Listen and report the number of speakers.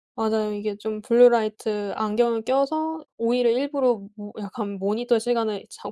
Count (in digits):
1